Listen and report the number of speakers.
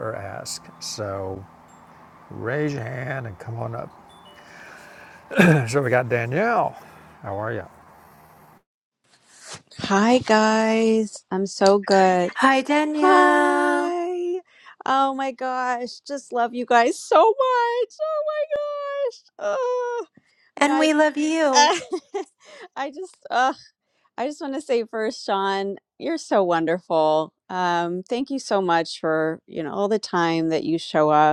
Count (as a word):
three